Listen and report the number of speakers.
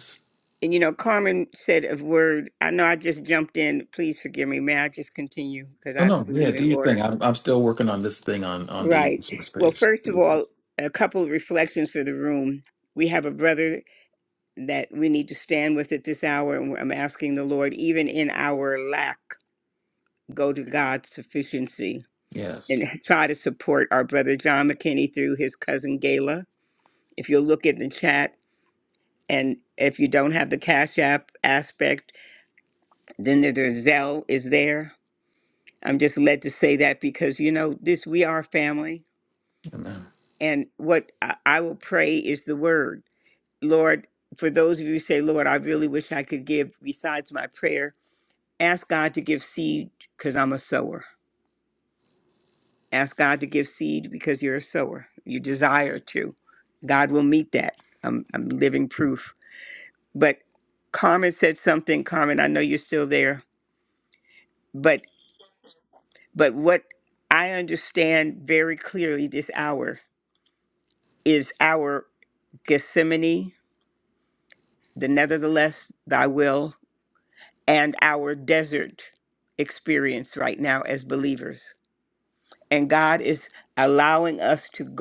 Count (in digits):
2